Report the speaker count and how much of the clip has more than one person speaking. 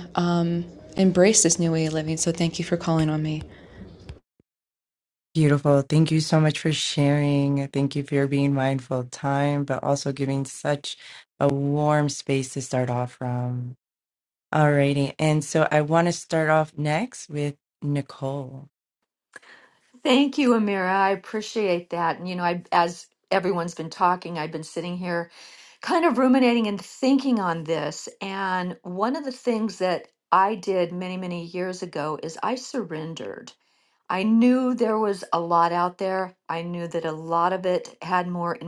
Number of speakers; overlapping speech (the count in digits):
3, no overlap